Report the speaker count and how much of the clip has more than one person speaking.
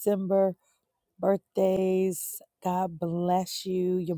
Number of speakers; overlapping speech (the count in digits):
1, no overlap